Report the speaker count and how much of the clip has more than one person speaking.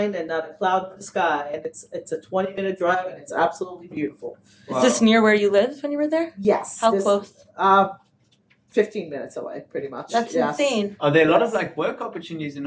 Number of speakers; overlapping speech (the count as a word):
three, about 15%